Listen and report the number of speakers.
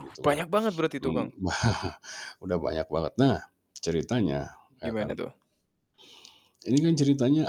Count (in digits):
2